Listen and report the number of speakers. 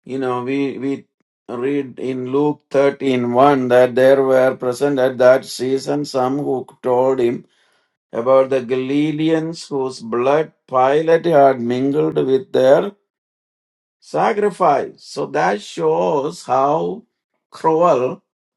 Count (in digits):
1